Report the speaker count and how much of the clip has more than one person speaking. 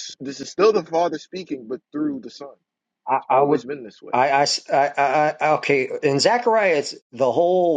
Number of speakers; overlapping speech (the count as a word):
two, about 5%